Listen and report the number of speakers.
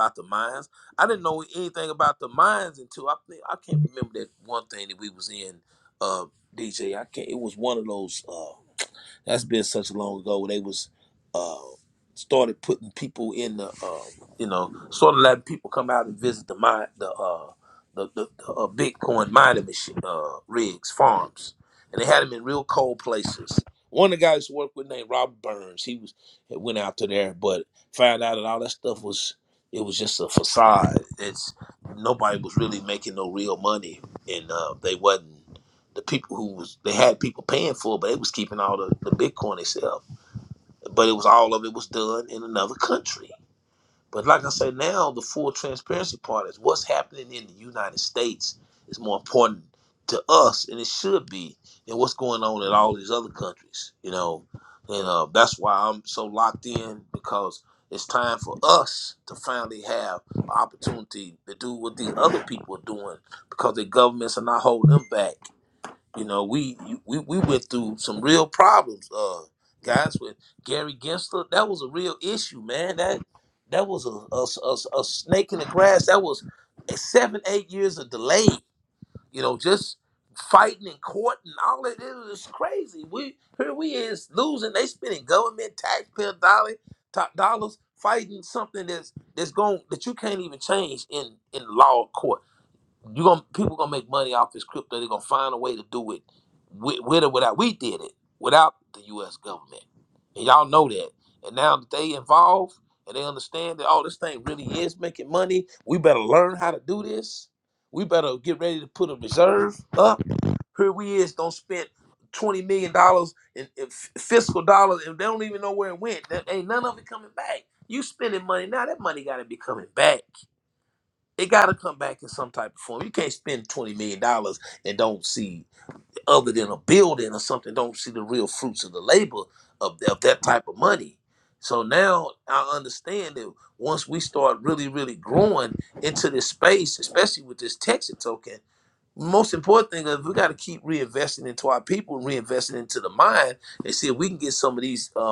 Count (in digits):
1